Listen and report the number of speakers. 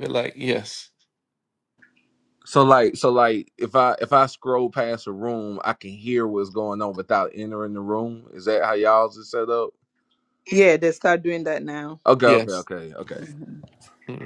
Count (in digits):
3